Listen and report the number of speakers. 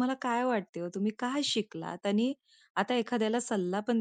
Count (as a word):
one